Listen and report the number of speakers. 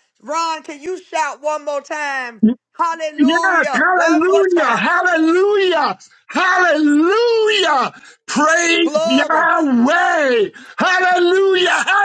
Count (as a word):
two